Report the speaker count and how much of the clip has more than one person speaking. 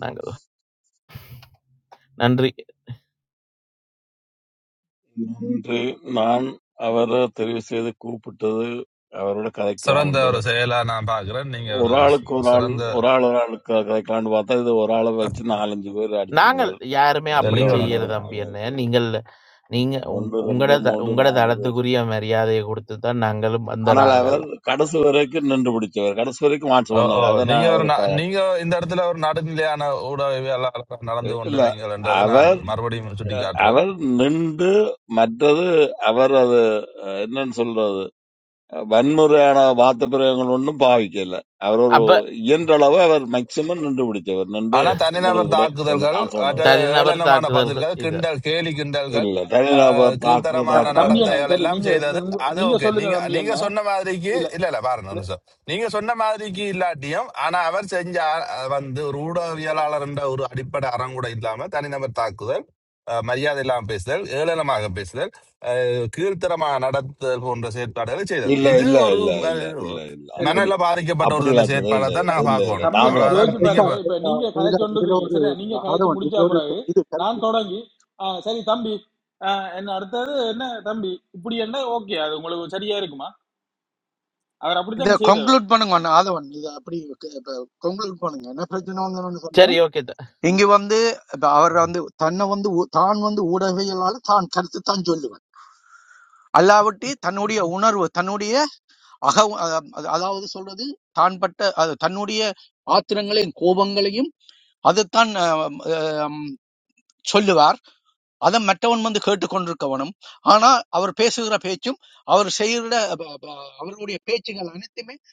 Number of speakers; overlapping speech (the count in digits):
5, about 20%